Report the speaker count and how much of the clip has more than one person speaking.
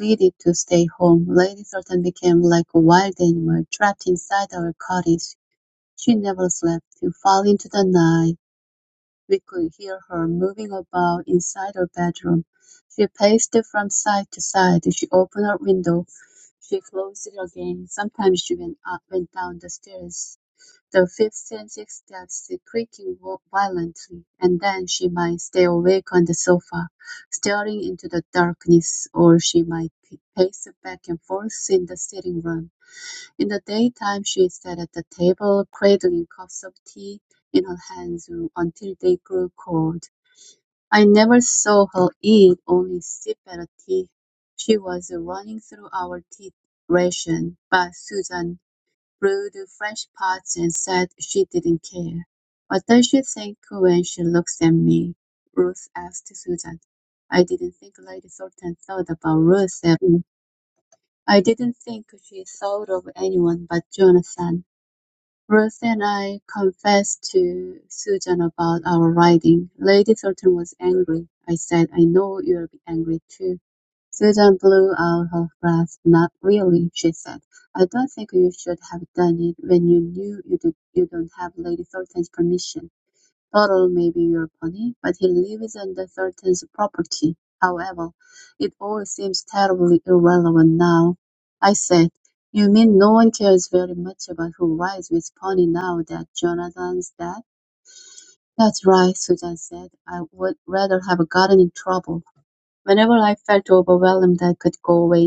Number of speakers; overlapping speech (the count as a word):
one, no overlap